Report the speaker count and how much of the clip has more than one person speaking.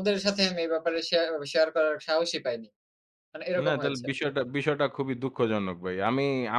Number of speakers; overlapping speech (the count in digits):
2, about 8%